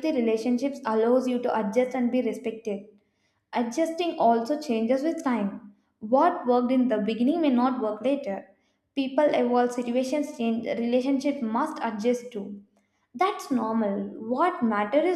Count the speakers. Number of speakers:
1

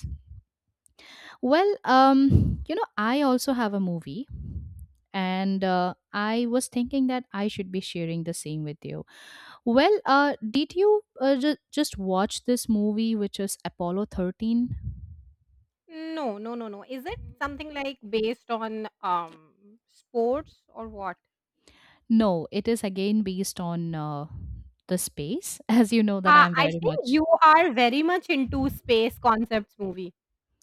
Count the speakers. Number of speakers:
2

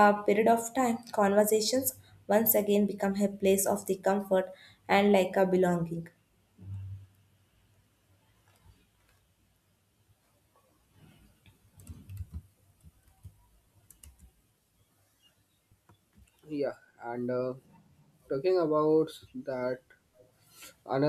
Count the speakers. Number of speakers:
2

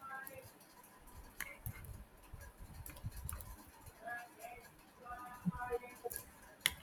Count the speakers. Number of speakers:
0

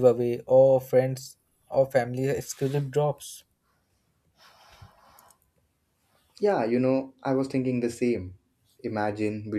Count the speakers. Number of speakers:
2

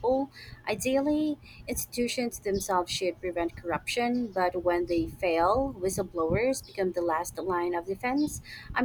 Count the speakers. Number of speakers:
1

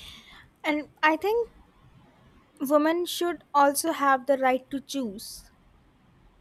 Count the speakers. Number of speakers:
1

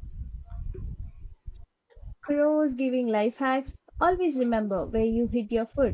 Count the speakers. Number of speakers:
1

